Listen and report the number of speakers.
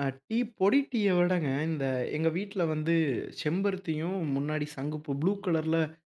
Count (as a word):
one